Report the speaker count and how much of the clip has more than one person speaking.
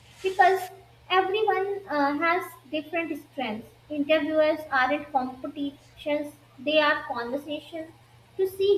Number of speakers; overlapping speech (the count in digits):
1, no overlap